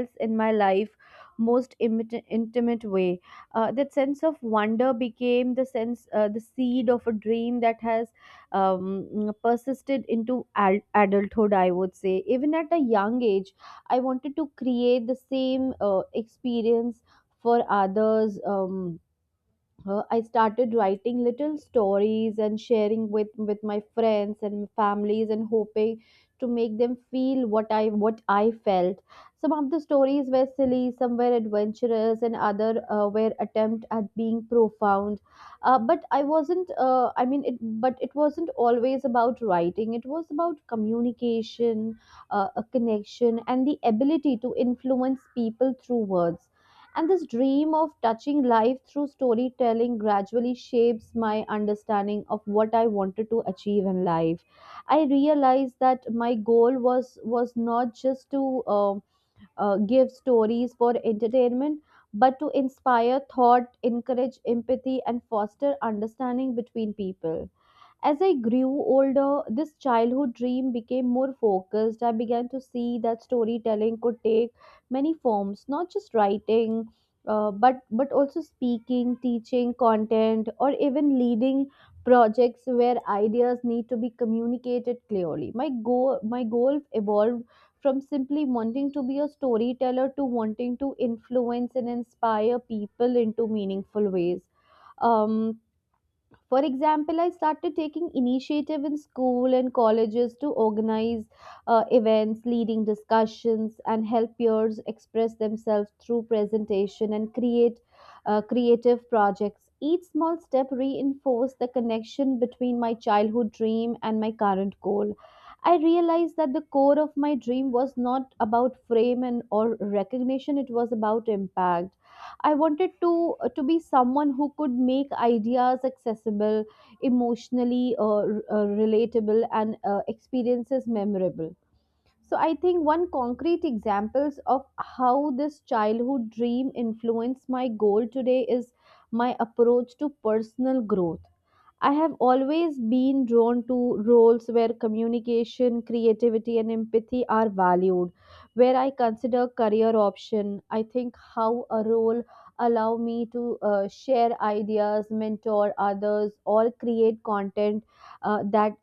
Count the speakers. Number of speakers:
1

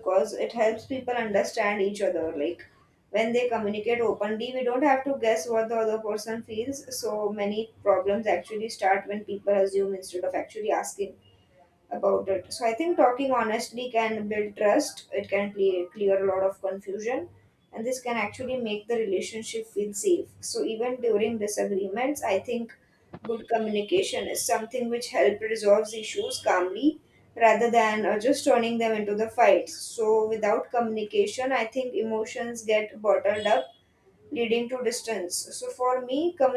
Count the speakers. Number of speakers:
1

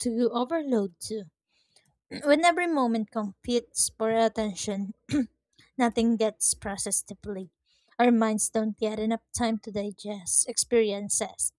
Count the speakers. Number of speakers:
1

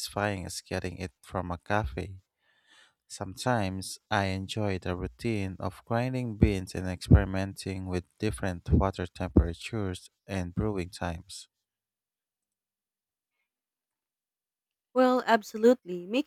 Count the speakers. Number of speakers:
2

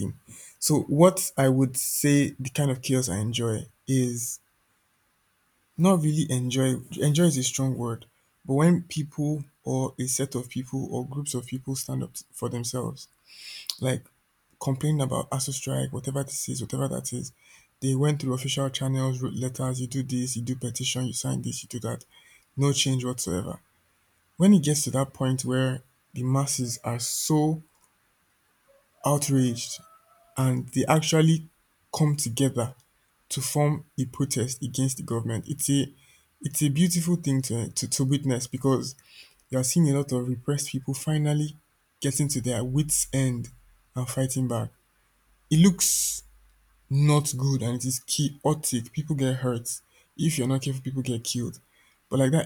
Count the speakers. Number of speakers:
1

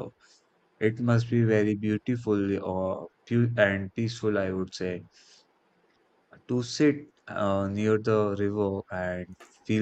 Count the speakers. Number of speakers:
1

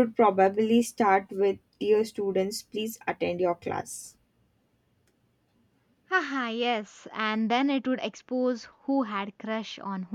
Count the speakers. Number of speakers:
2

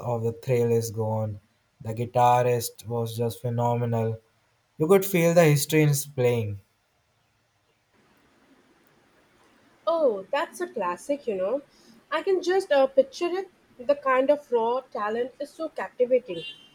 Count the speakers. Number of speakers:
2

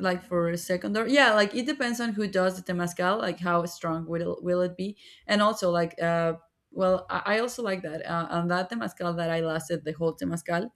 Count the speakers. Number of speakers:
1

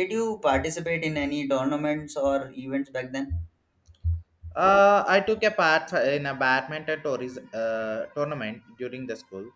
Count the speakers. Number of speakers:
2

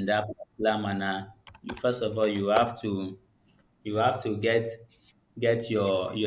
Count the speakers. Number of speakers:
1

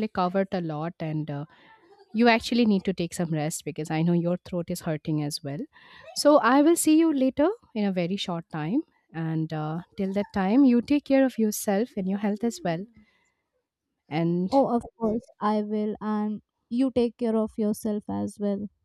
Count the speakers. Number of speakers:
2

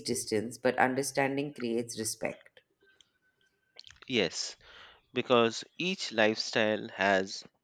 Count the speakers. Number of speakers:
2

